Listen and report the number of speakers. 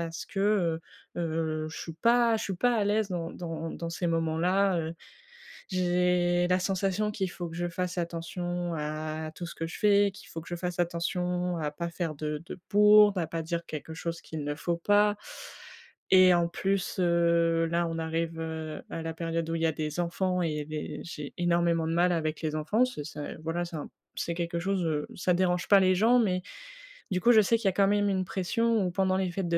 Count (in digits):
1